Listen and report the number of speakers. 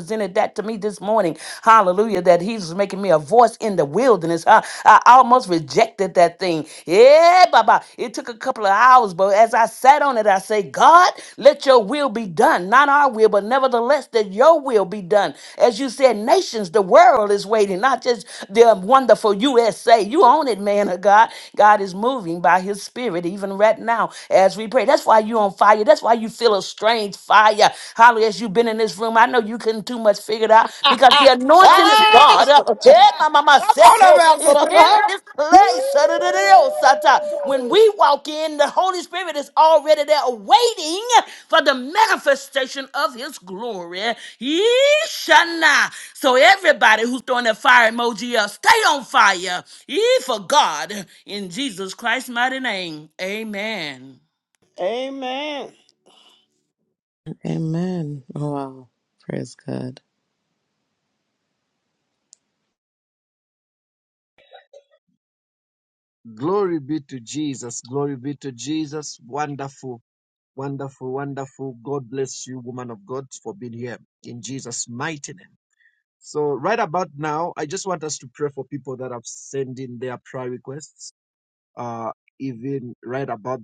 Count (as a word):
four